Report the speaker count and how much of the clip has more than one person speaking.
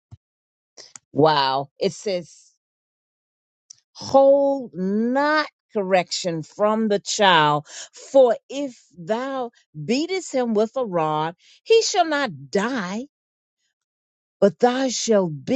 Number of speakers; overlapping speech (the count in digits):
1, no overlap